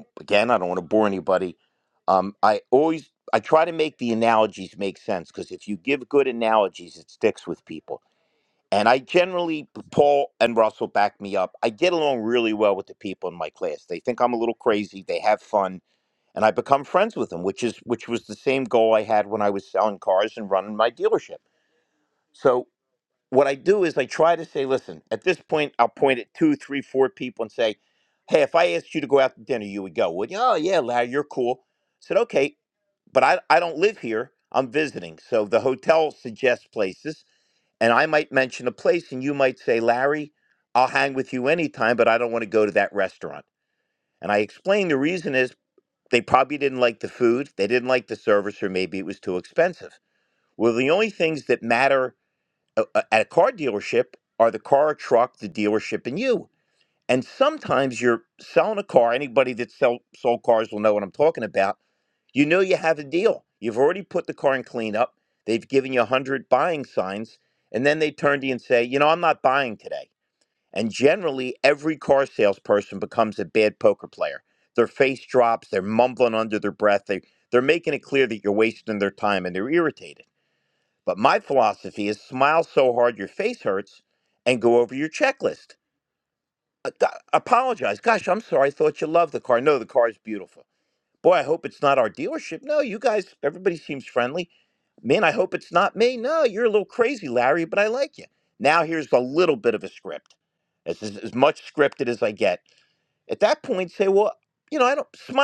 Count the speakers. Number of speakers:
one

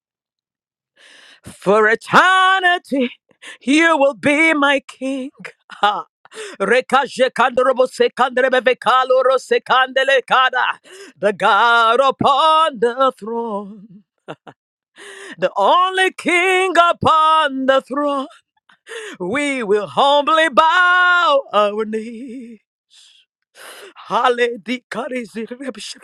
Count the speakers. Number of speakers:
one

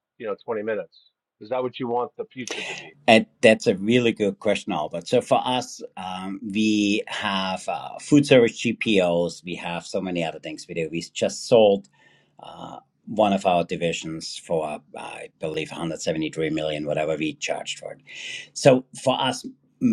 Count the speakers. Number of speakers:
two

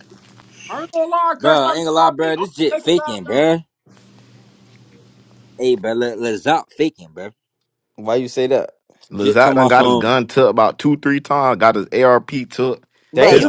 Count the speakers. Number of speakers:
four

